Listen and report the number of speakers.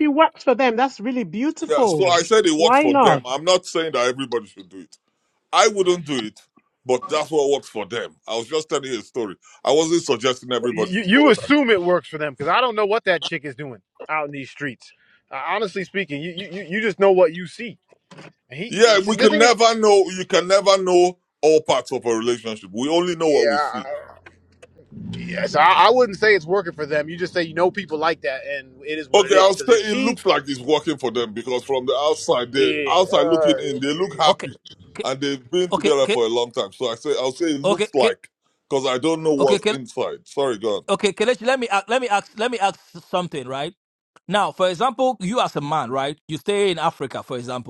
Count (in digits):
4